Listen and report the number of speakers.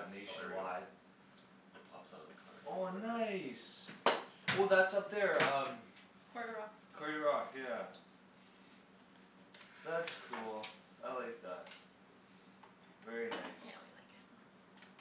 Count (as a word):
three